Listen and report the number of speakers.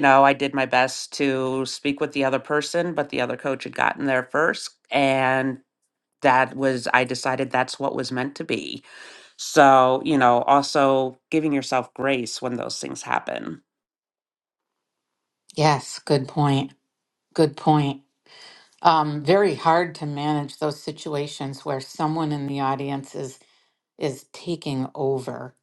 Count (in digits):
2